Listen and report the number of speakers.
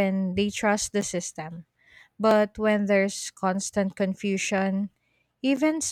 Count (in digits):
1